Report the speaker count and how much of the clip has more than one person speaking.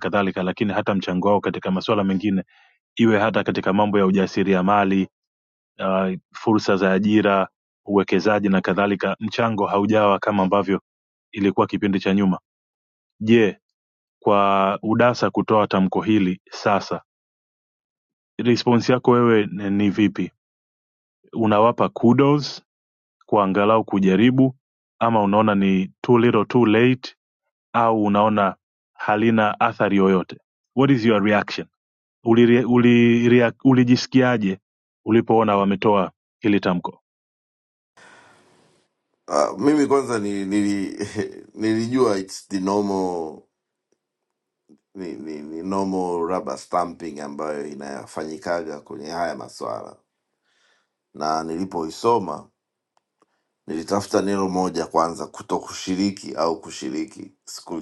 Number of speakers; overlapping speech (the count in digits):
2, no overlap